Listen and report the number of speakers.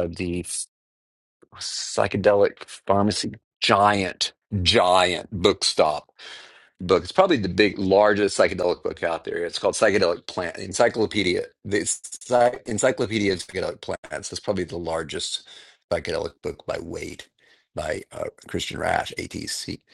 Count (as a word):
one